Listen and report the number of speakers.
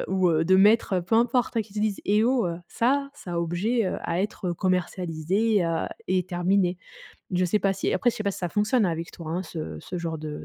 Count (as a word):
one